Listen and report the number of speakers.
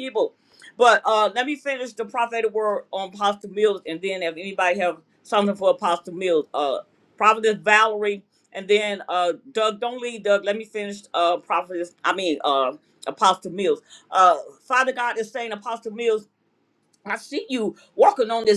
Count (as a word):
one